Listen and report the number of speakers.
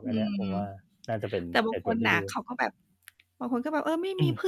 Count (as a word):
two